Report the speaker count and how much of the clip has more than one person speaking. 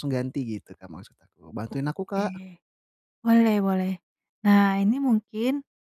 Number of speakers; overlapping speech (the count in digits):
2, about 3%